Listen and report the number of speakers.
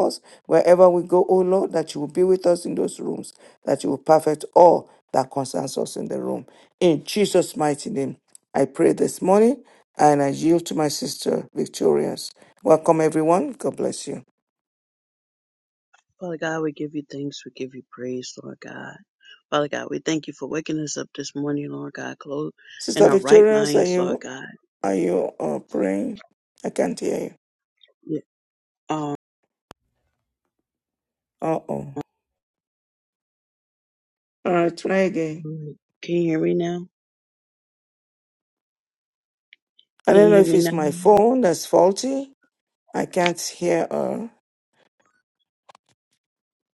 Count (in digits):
2